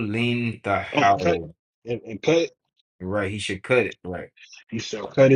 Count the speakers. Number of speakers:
two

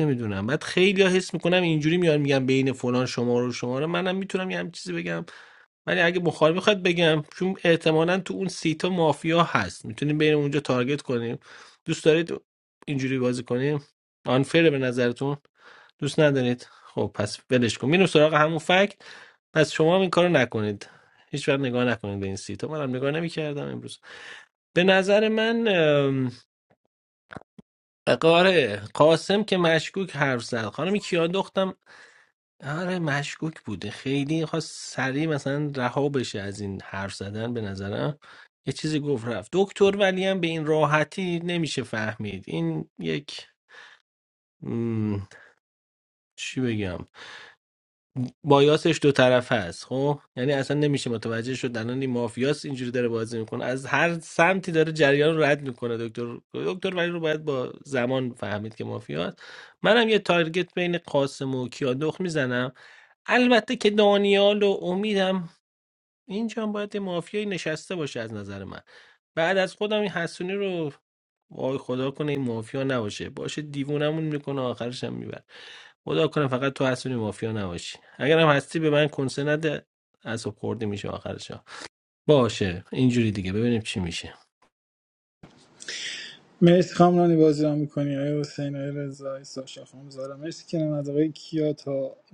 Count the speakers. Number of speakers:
two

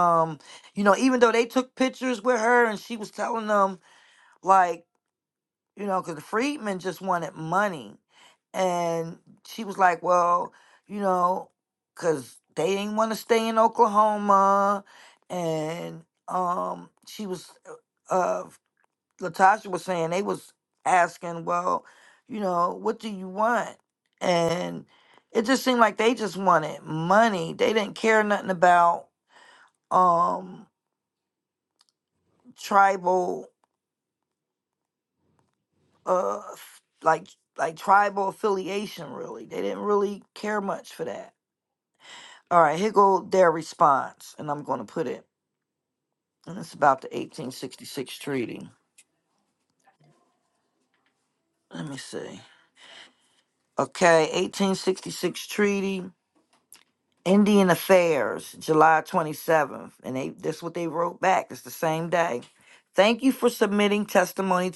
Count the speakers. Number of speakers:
one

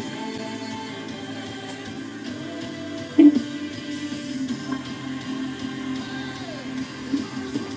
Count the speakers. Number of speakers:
zero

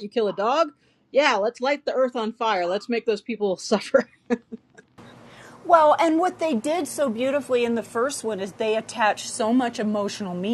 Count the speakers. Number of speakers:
two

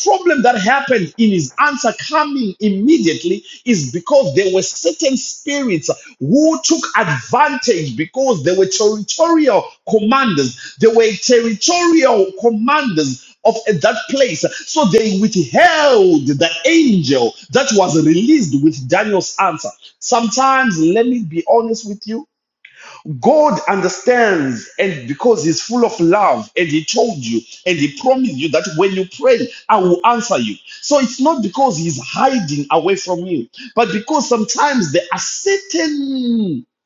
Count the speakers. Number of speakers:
one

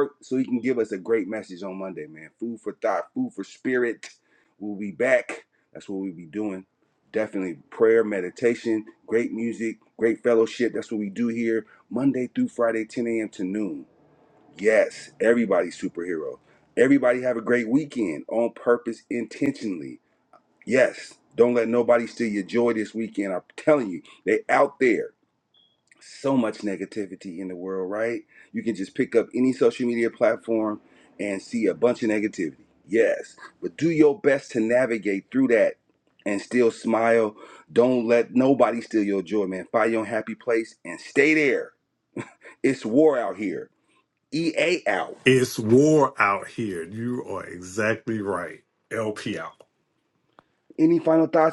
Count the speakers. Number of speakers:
two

